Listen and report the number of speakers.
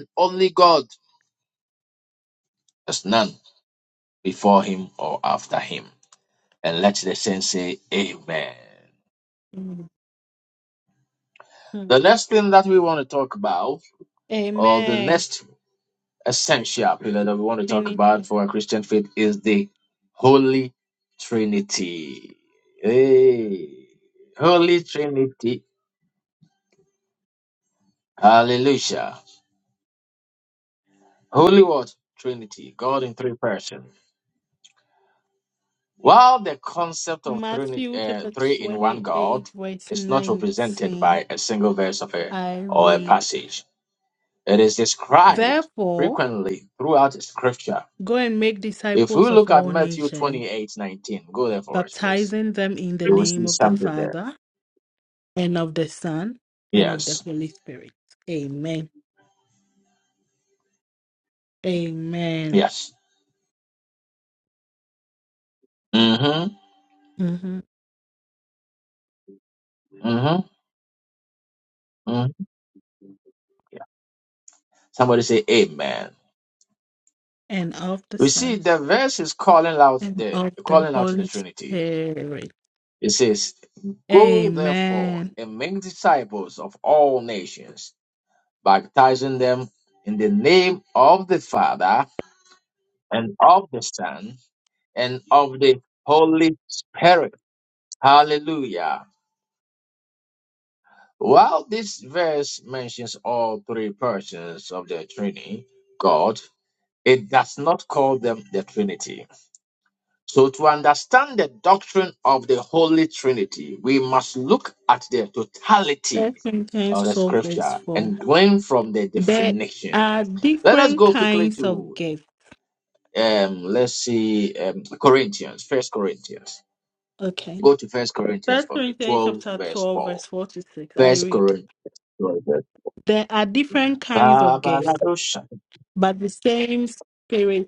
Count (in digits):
2